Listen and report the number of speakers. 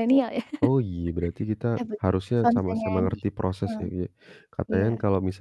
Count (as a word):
two